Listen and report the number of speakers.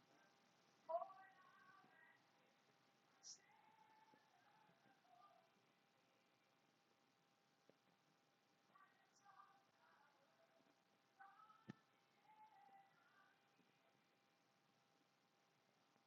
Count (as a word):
zero